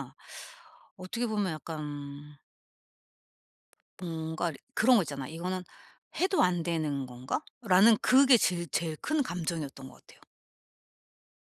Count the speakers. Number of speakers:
one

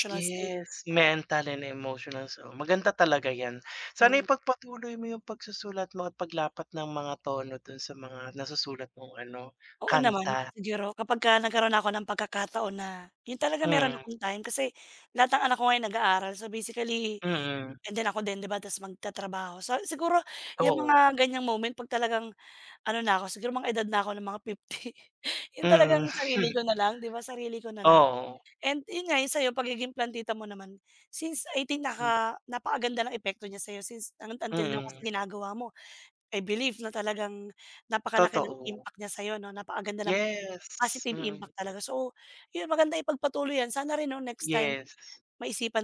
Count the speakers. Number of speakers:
two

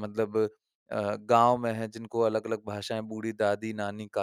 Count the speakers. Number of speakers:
one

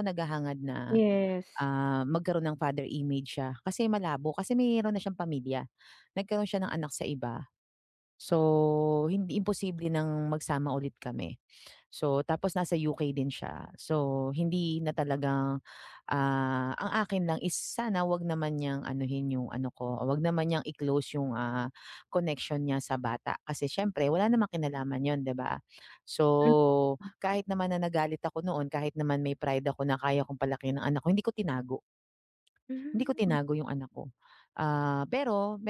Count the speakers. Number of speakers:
two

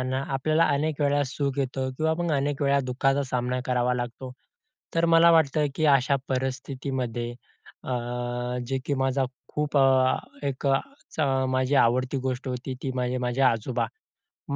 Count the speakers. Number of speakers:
one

